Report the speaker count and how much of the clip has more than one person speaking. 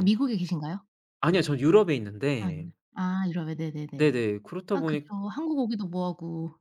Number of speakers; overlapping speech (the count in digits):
2, about 12%